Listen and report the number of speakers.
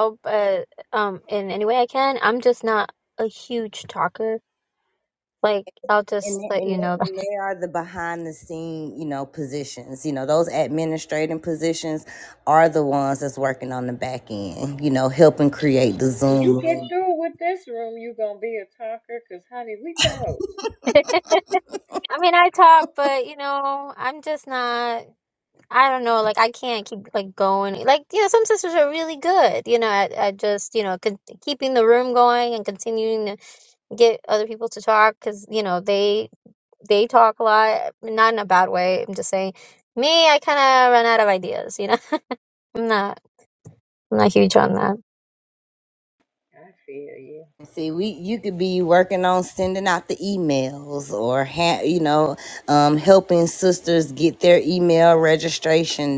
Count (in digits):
3